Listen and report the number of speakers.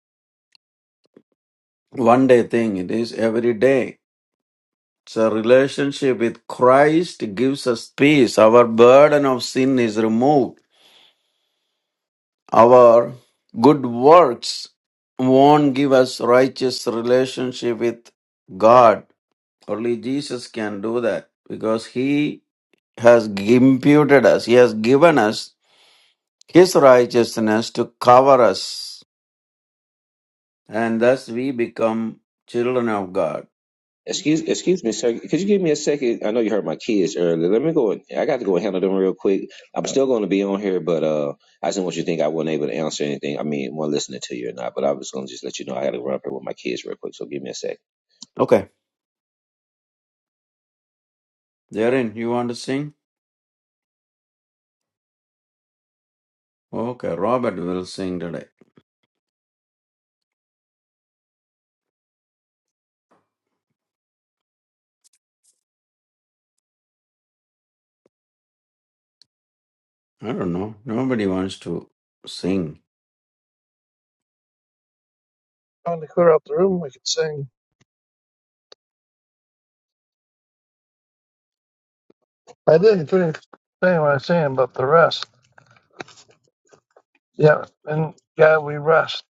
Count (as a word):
three